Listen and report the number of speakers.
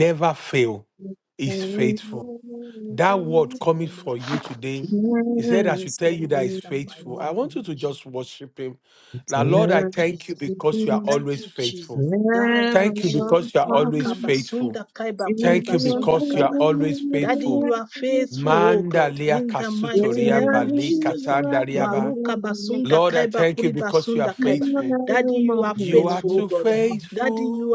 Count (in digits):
3